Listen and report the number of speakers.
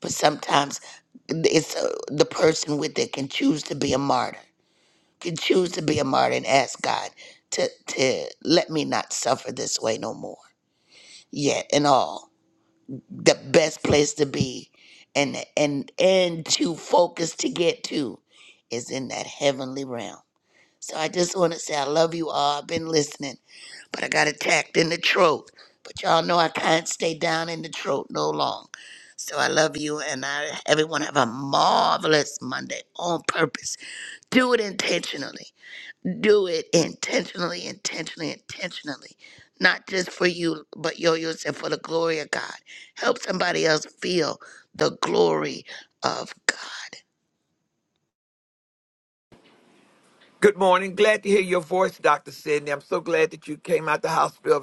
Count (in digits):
2